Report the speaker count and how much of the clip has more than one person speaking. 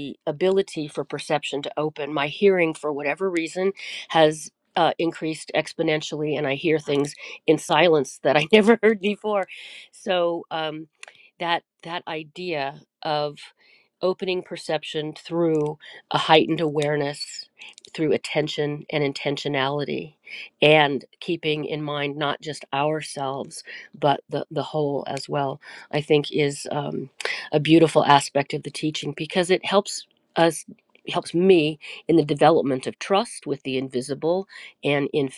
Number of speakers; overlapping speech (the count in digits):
1, no overlap